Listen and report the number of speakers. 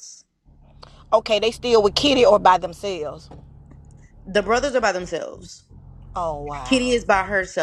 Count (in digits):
2